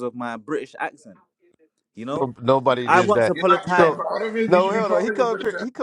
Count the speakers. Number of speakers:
three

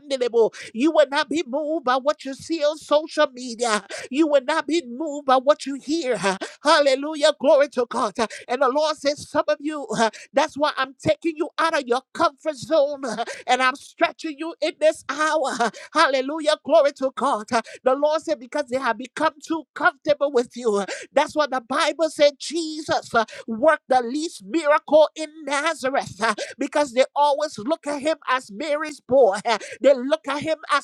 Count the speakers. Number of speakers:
one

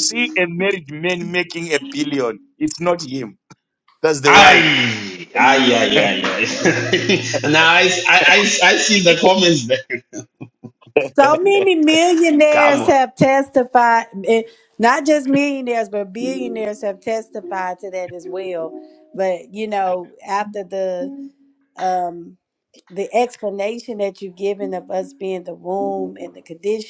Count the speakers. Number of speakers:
three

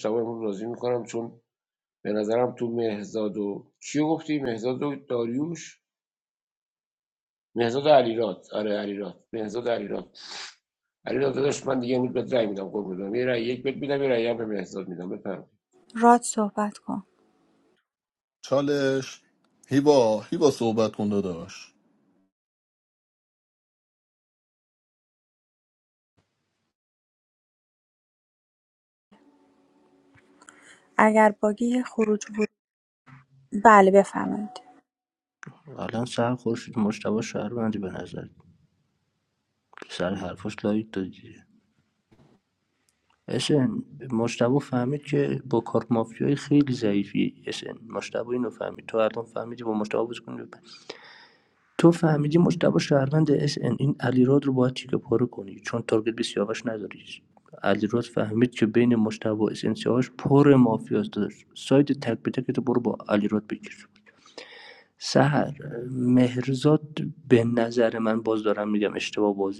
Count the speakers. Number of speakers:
four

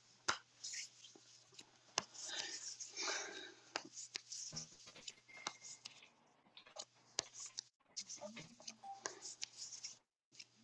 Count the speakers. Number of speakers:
zero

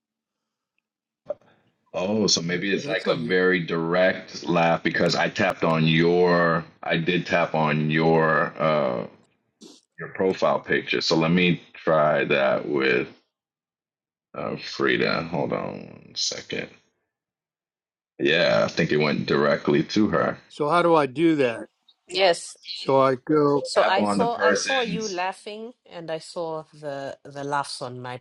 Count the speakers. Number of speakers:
three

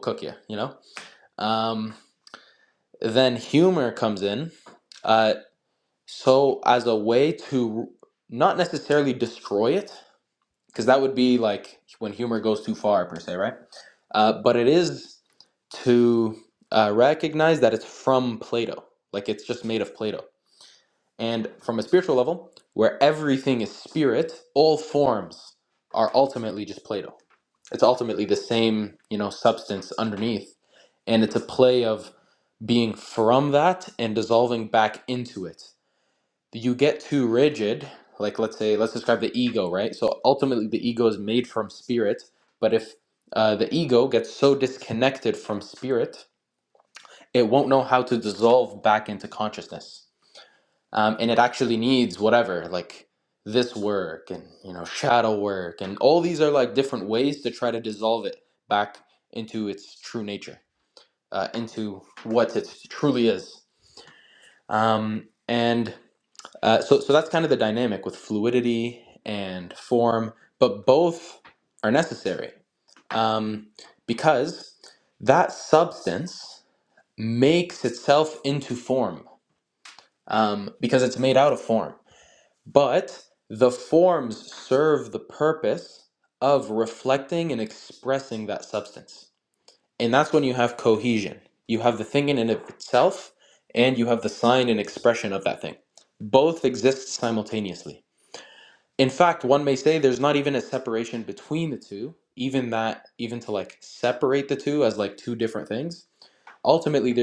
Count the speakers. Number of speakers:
one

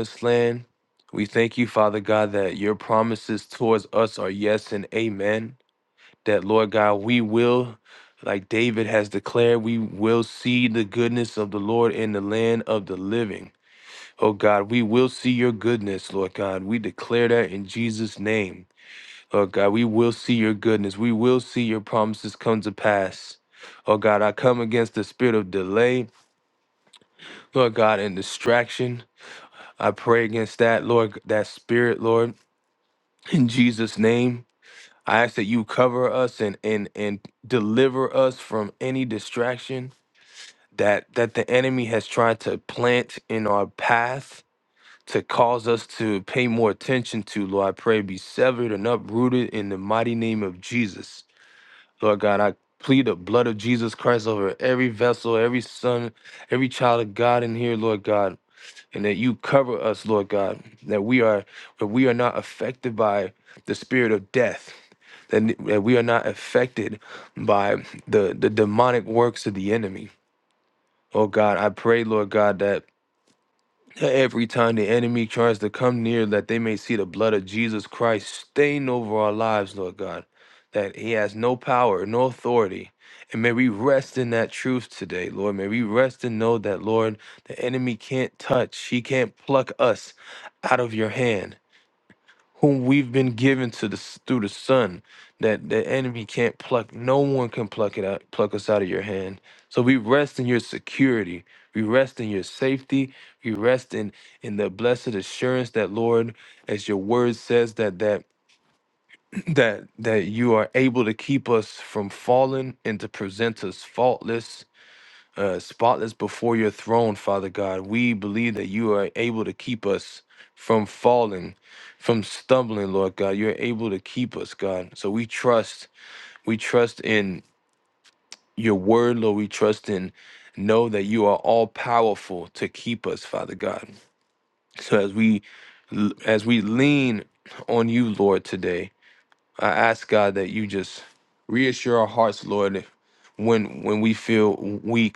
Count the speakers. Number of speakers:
one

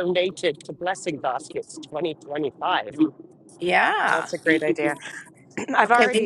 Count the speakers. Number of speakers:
three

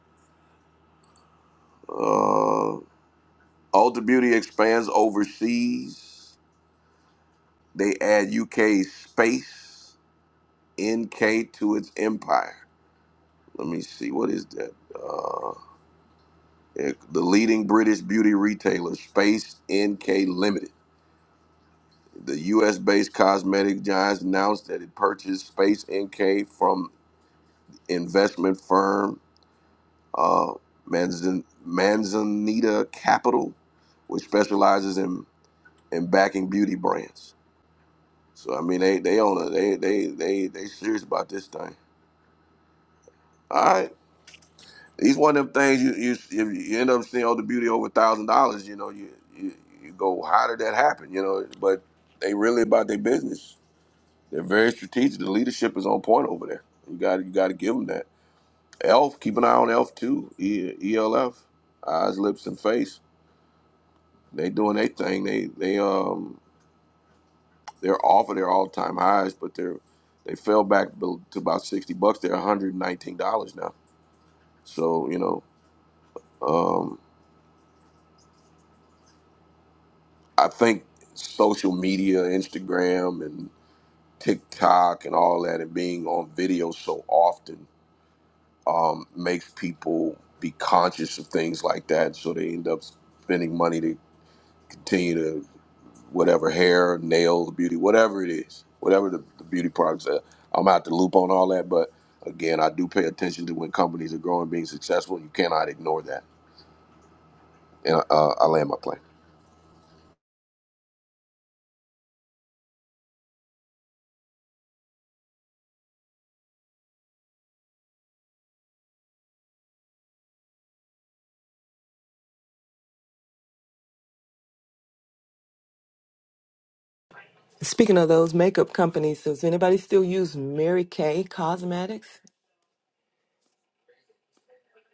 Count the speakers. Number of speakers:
two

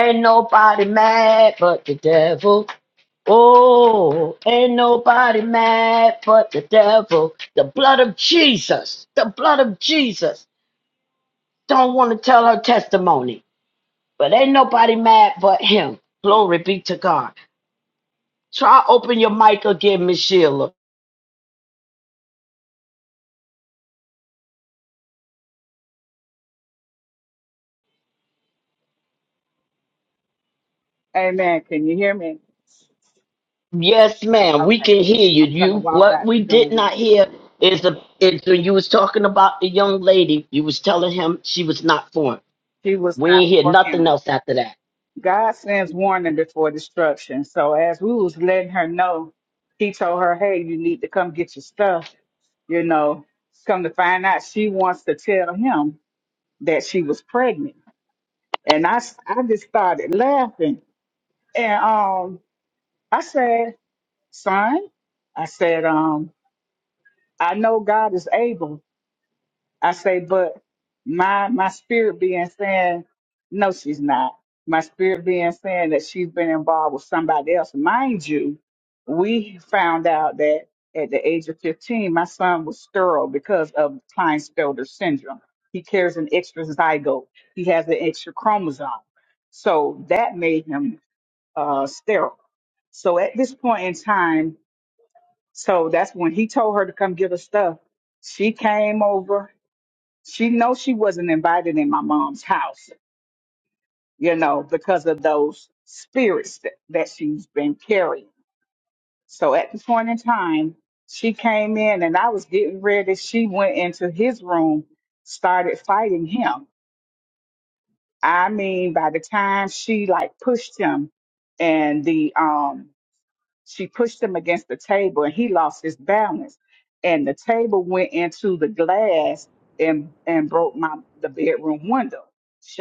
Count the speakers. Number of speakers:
two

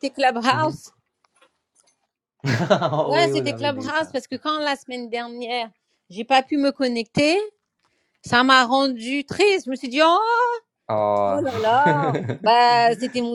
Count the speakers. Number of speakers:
two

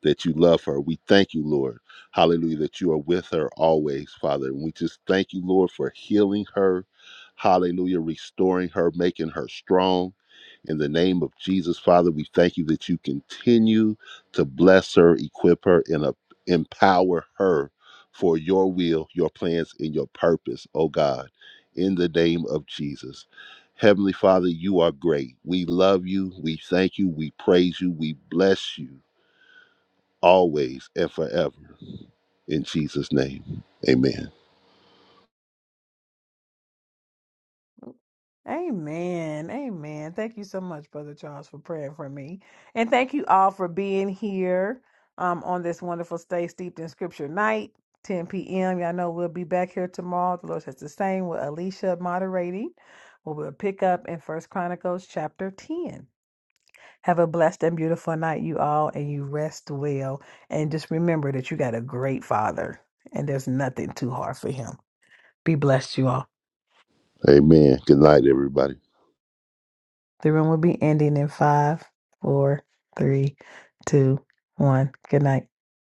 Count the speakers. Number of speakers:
two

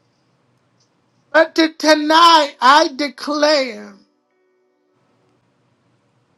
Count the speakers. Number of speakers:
one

